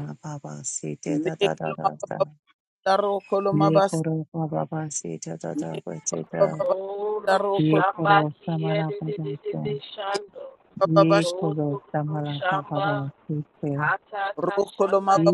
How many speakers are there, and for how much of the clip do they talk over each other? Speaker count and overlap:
three, about 43%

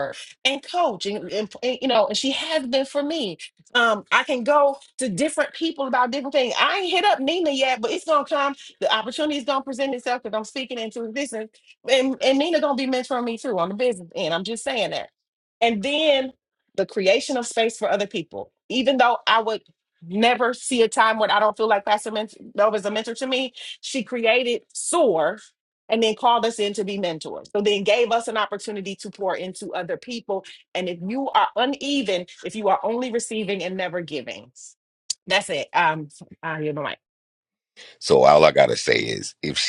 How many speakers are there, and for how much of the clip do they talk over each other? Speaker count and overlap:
two, no overlap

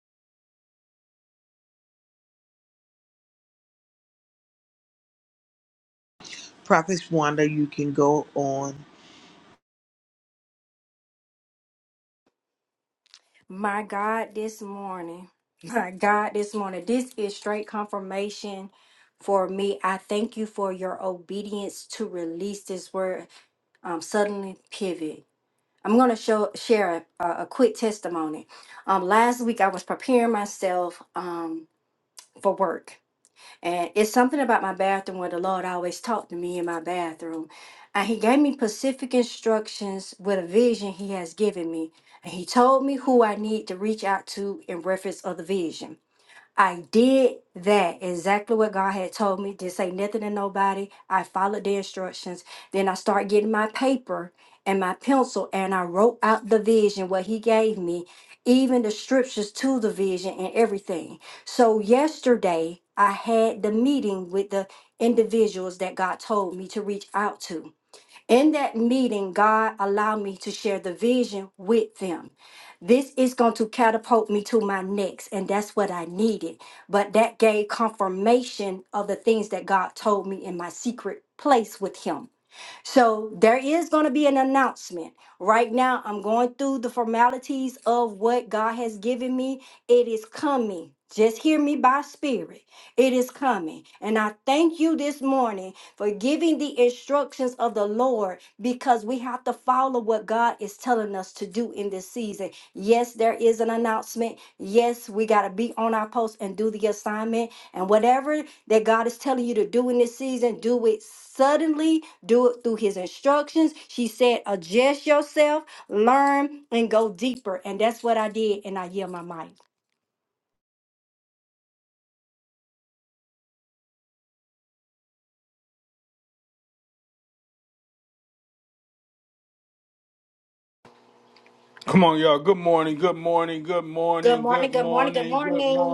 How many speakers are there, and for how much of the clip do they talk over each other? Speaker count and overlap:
three, about 1%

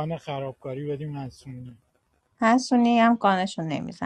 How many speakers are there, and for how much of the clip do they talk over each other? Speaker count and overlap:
two, no overlap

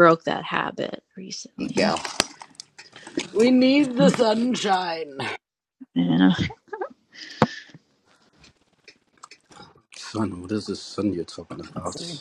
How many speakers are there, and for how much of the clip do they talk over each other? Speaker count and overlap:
three, about 9%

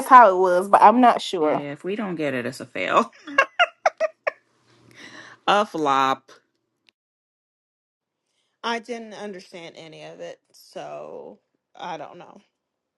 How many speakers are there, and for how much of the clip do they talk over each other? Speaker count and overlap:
three, about 2%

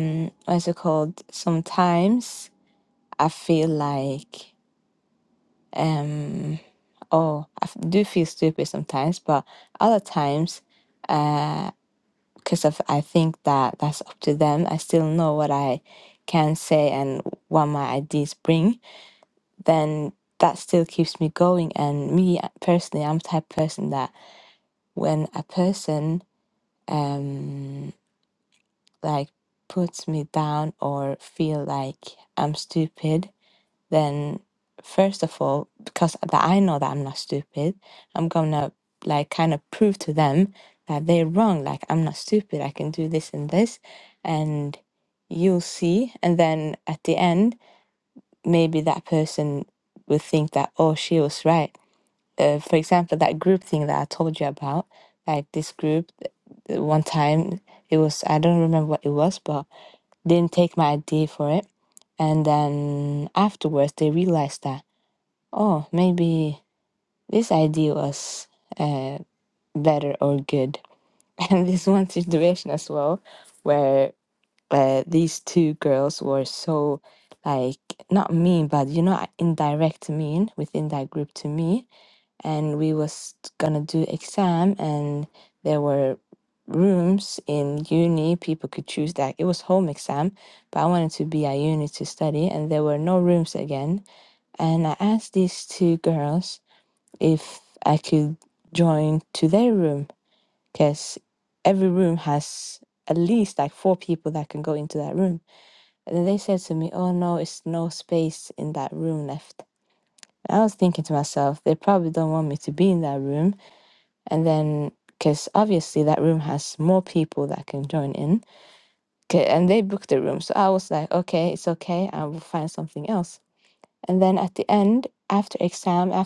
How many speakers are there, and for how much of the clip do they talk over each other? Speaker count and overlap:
one, no overlap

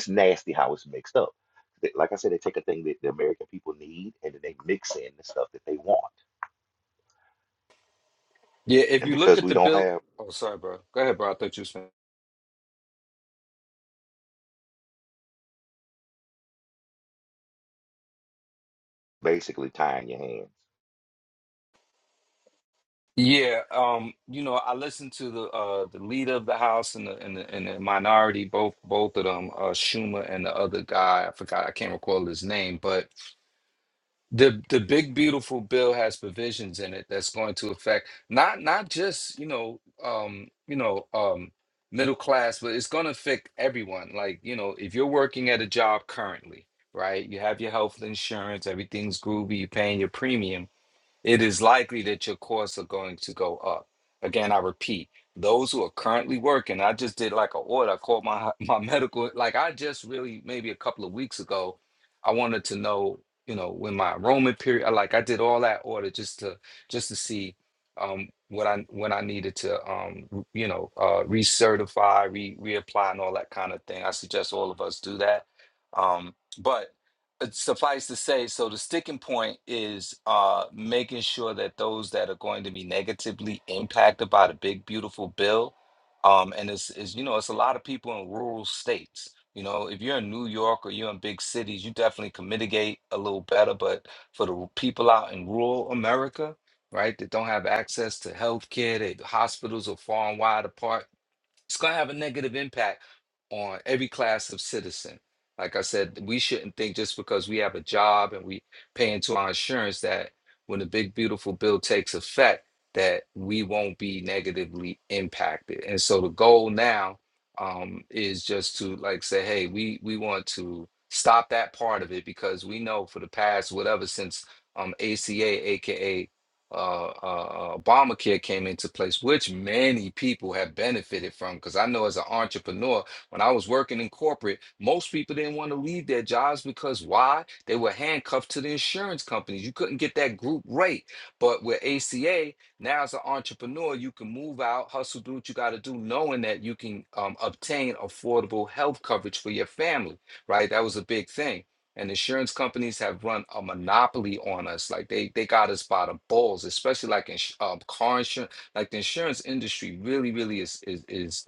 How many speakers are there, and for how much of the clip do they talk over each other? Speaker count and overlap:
two, about 1%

